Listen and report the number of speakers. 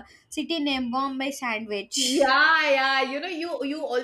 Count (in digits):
2